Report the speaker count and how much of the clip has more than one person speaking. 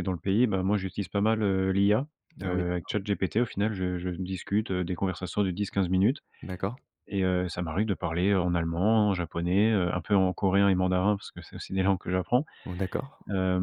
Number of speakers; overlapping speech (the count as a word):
two, about 4%